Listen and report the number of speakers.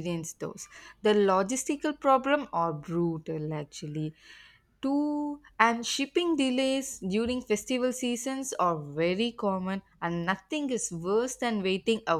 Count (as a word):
one